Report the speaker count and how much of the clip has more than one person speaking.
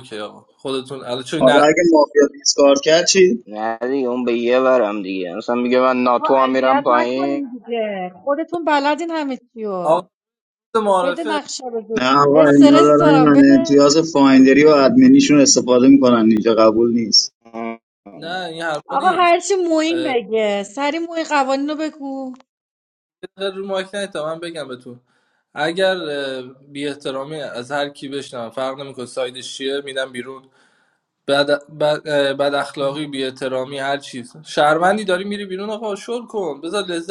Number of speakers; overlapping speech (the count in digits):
4, about 12%